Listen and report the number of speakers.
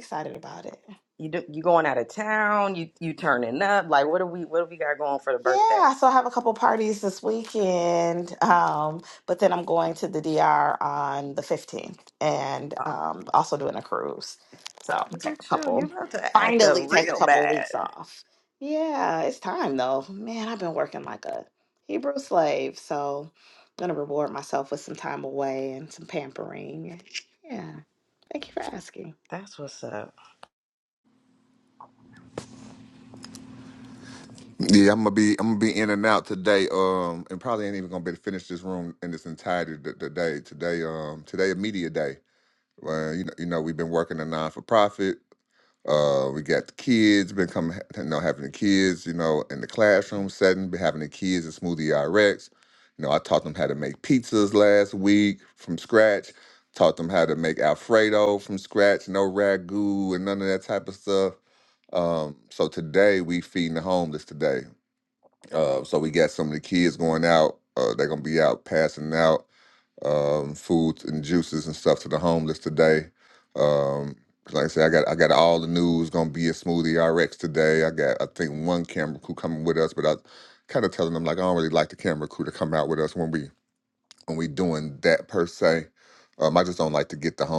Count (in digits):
3